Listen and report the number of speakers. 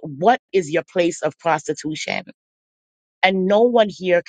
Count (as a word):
one